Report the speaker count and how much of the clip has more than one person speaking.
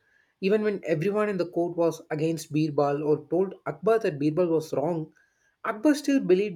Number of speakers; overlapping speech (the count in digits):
1, no overlap